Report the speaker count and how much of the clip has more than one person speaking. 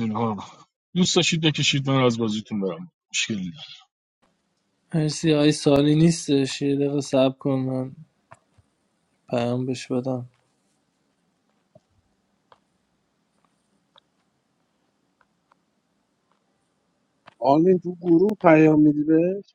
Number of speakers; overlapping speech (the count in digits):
3, no overlap